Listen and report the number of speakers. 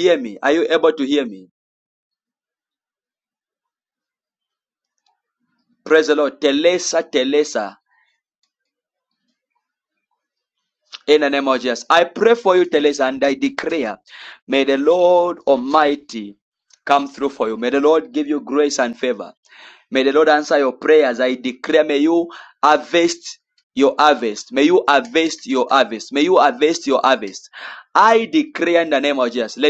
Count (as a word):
one